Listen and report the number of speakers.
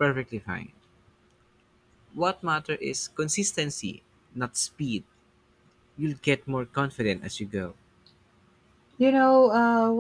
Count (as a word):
two